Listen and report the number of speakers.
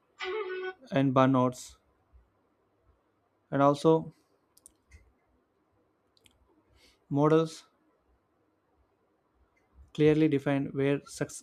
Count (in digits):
1